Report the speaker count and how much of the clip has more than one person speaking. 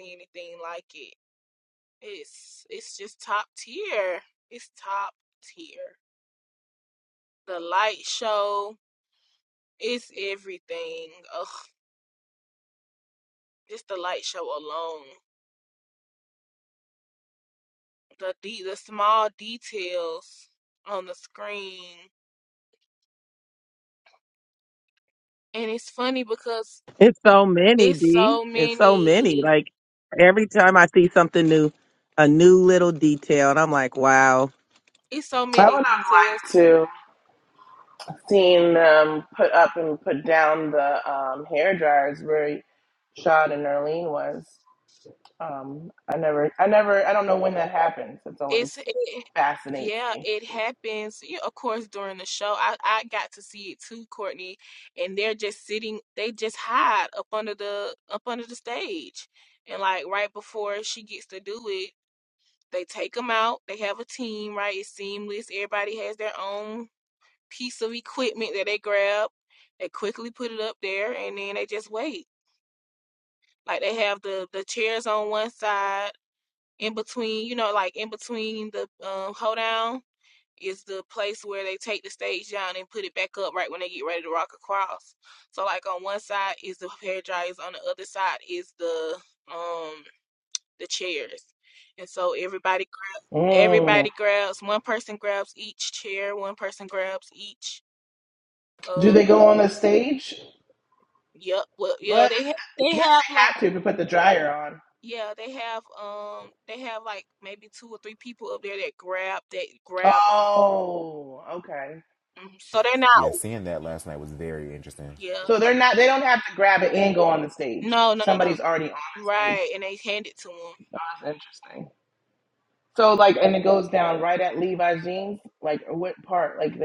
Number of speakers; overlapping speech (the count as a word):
four, about 5%